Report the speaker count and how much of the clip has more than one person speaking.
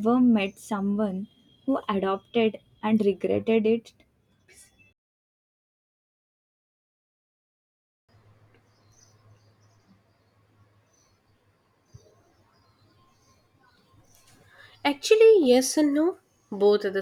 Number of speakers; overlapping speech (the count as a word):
two, no overlap